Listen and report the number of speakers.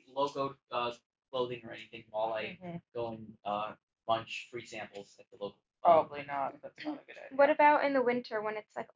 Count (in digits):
3